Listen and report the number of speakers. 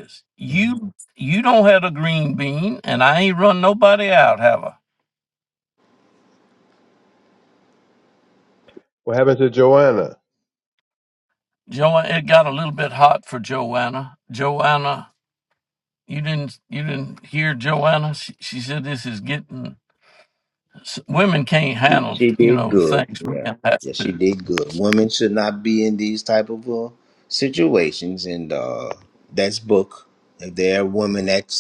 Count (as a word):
three